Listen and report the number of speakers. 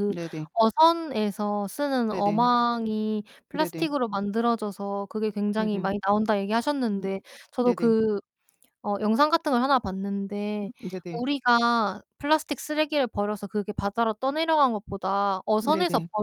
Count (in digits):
2